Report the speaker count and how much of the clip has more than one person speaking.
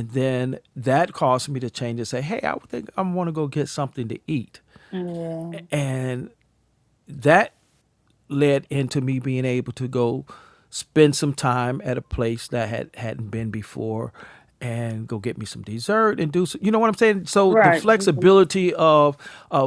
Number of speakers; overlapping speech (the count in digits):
2, about 2%